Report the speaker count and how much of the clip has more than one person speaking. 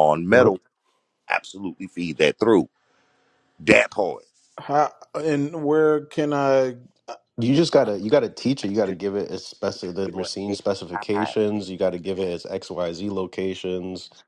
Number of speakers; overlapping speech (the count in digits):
3, about 6%